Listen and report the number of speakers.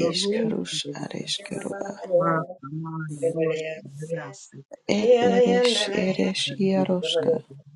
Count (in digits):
3